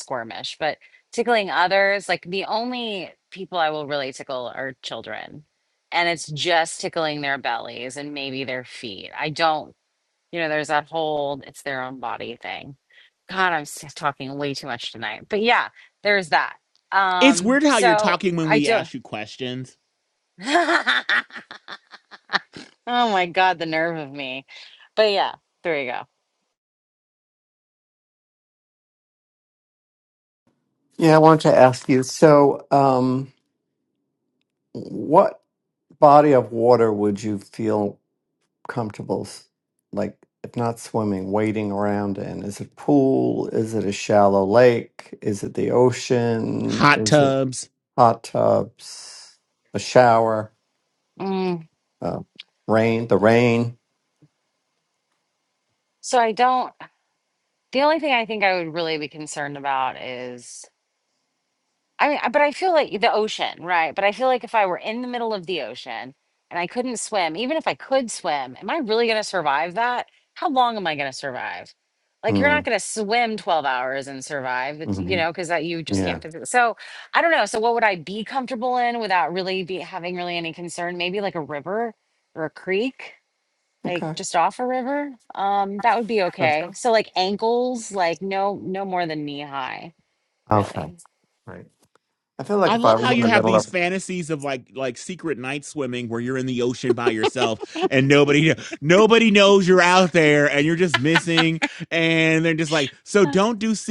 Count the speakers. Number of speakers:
3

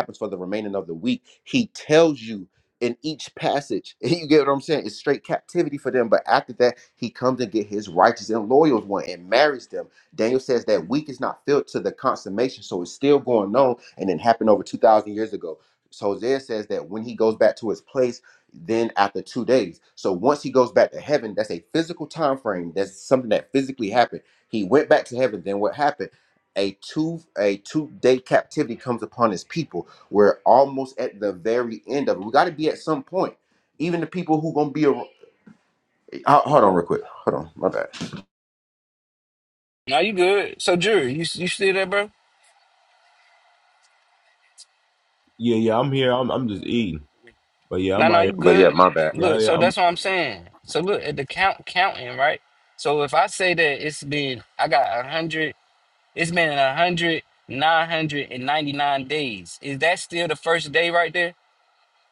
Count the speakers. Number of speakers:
3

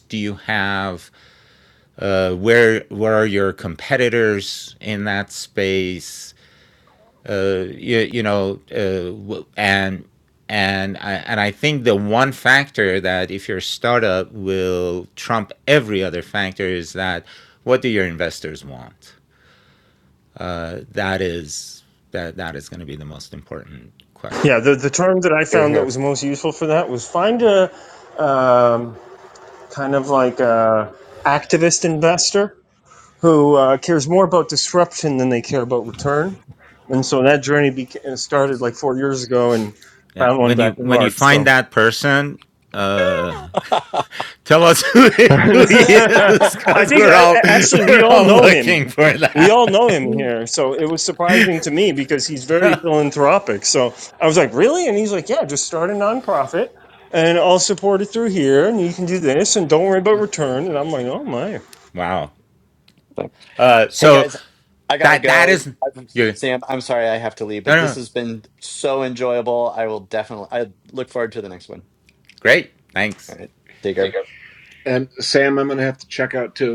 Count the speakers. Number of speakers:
4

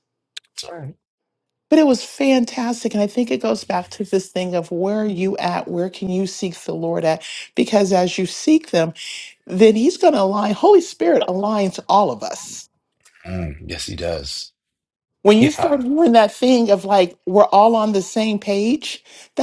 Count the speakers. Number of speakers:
2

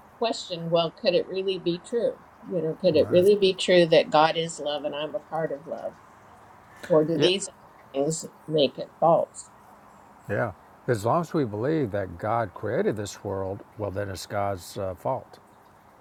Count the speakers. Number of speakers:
2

